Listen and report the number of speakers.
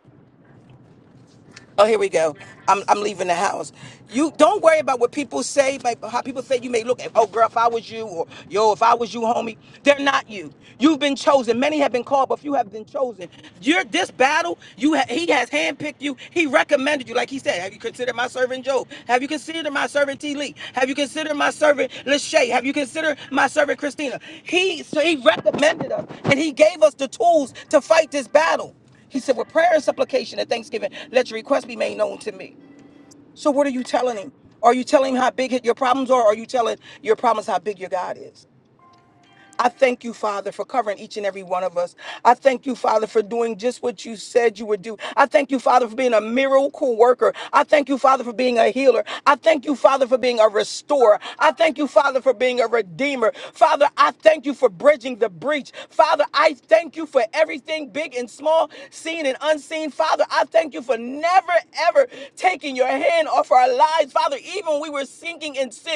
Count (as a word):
one